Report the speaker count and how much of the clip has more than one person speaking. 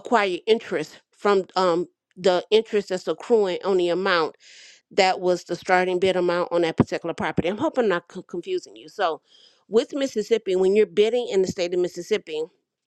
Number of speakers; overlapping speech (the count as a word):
one, no overlap